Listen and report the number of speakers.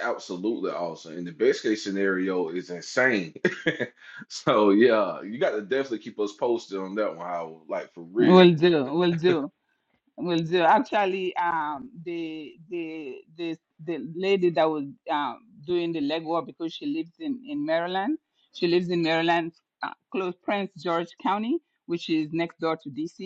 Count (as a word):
two